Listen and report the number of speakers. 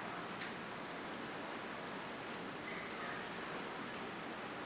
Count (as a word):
zero